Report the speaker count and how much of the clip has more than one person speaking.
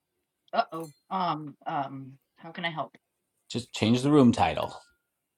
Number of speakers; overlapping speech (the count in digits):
2, no overlap